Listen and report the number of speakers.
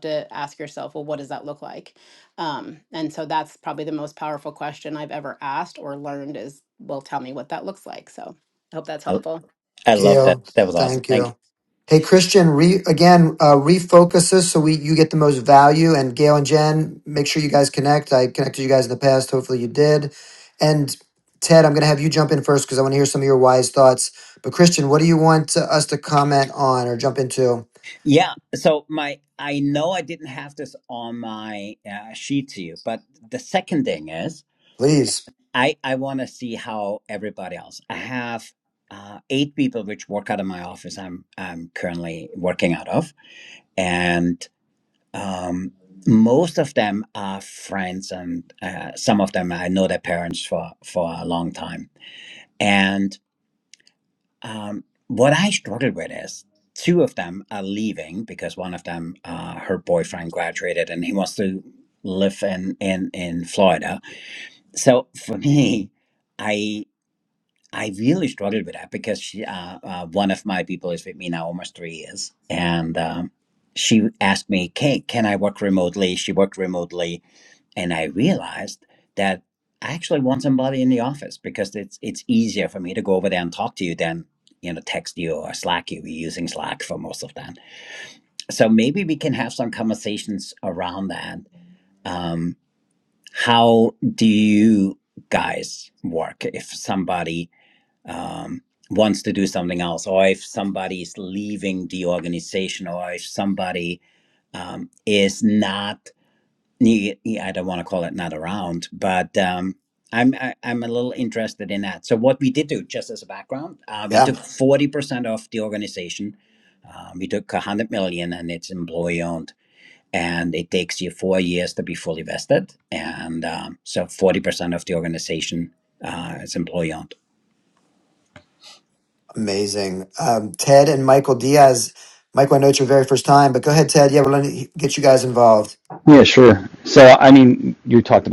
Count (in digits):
4